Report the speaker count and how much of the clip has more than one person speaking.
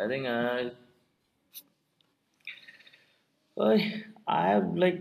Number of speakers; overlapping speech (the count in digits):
1, no overlap